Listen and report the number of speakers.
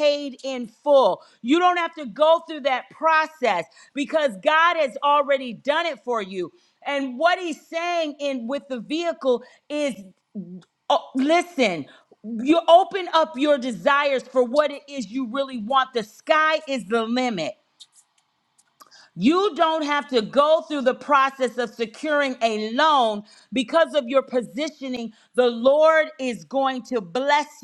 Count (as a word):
one